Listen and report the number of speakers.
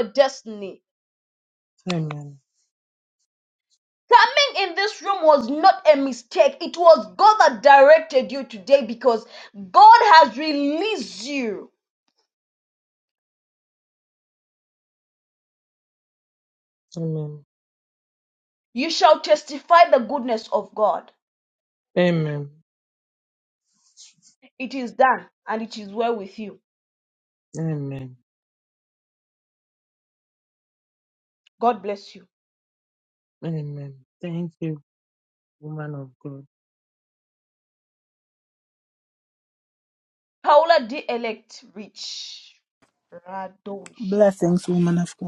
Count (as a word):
three